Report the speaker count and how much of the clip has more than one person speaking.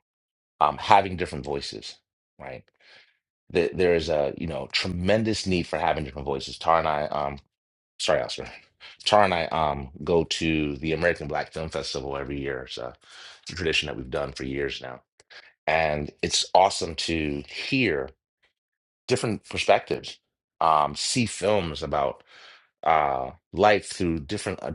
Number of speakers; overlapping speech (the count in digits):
1, no overlap